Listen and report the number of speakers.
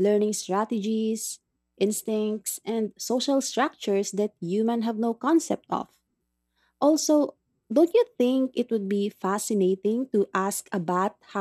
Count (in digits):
1